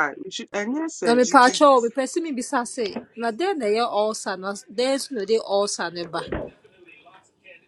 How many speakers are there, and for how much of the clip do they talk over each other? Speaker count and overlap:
two, about 7%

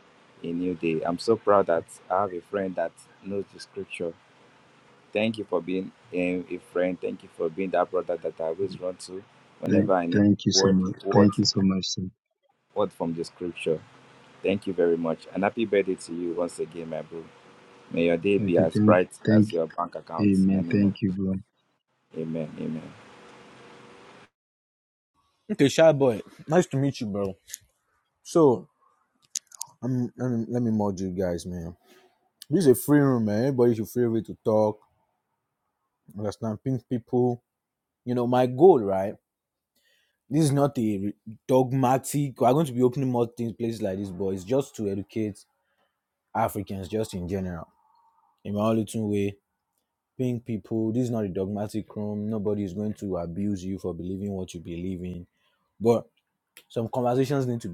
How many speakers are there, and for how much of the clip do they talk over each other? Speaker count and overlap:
three, about 6%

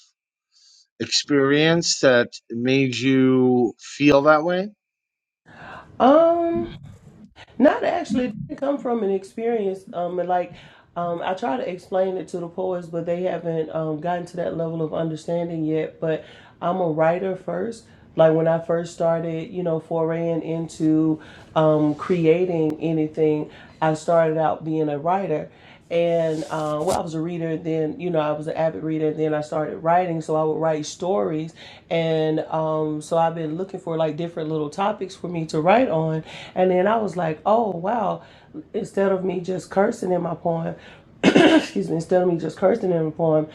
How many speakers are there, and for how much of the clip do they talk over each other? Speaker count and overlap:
two, no overlap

